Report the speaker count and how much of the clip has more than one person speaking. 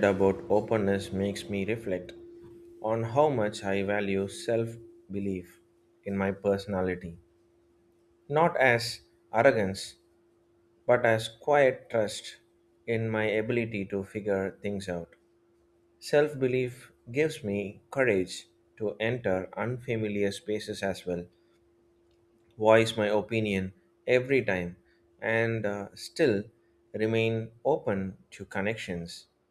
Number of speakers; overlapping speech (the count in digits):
1, no overlap